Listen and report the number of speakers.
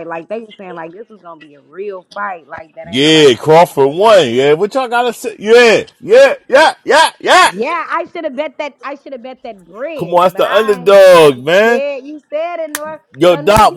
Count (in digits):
2